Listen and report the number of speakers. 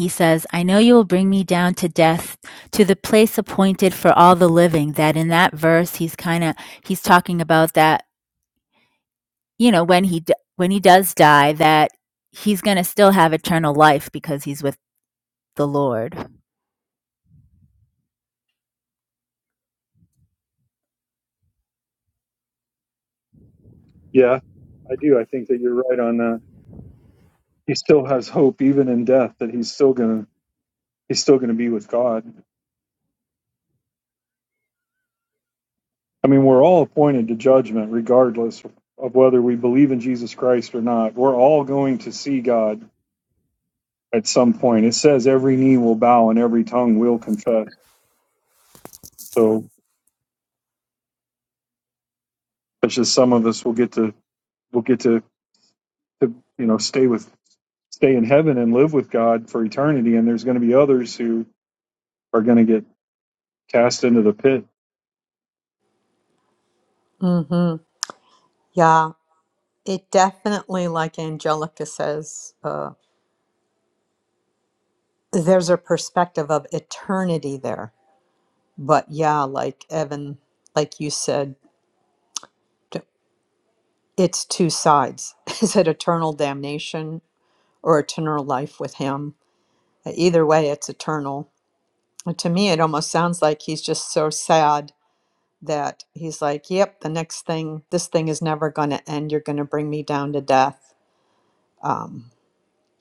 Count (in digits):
3